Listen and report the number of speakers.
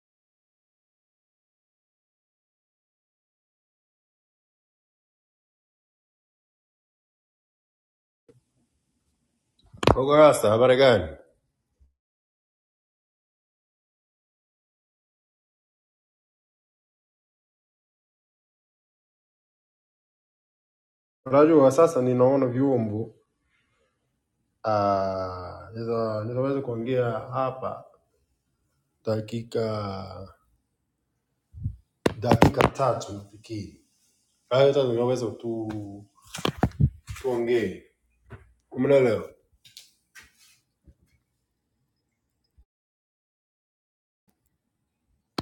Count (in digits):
1